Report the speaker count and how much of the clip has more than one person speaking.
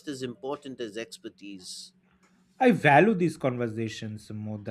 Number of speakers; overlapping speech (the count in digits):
2, no overlap